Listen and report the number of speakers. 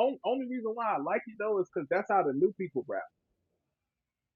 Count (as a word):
one